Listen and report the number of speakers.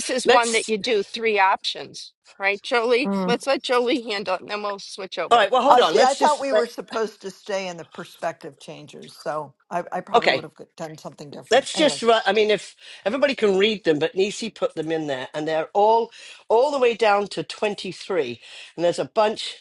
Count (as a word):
three